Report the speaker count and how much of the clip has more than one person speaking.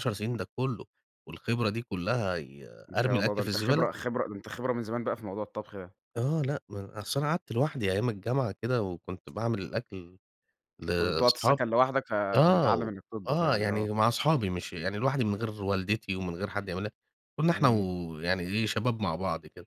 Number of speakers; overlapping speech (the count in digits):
2, about 16%